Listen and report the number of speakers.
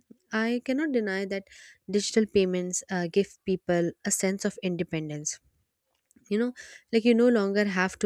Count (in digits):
1